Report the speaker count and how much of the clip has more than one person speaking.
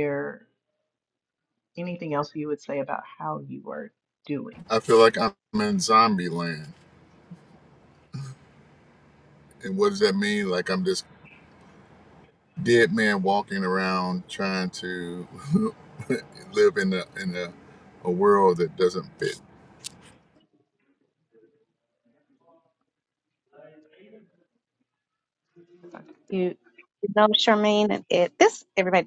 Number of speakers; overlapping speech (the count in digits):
3, no overlap